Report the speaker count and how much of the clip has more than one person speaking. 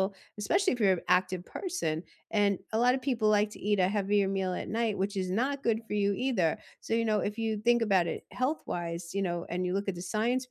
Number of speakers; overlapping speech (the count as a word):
one, no overlap